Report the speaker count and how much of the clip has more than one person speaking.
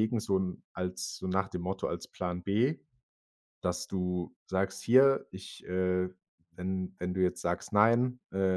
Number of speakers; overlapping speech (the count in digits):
1, no overlap